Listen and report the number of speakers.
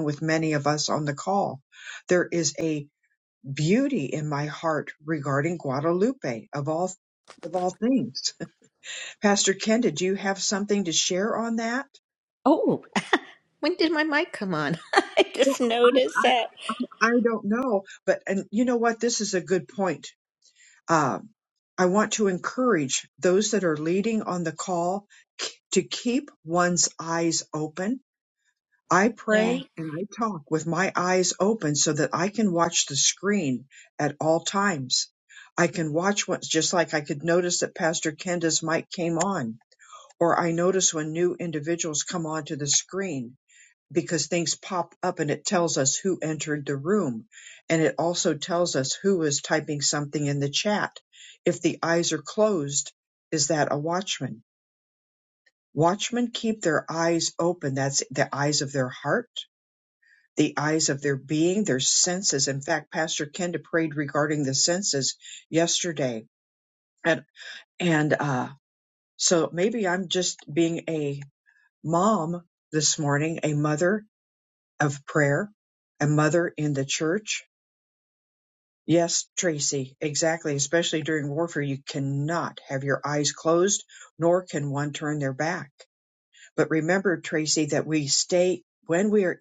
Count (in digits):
2